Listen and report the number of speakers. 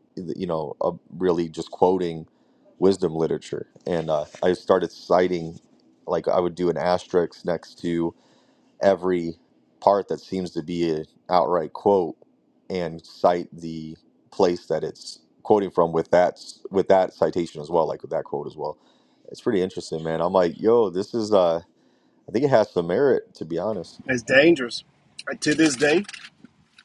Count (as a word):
two